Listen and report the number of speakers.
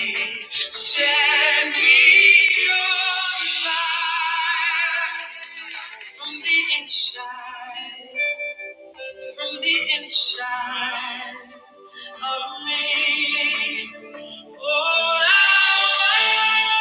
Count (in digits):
1